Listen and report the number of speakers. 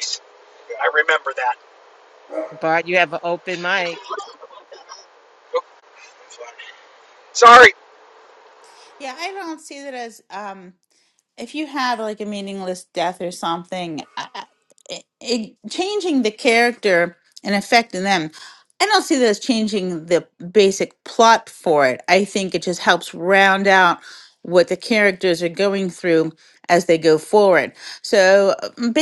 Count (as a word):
three